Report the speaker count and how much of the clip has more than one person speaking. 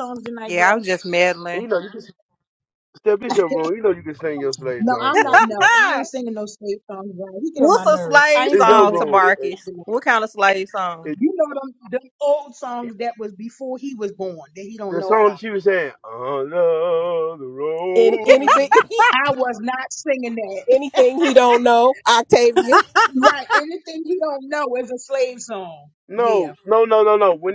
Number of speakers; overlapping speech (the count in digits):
4, about 17%